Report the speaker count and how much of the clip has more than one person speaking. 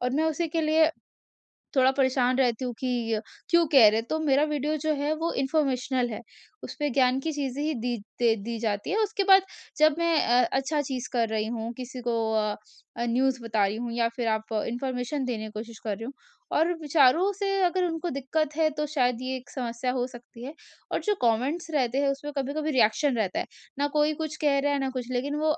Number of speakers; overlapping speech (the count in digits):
1, no overlap